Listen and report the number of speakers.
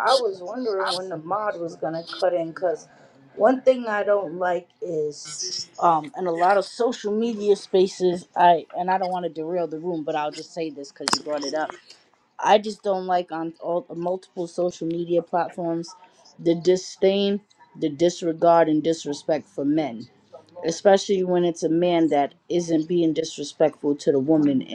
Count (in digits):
1